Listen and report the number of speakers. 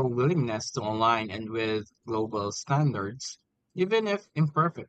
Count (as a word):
one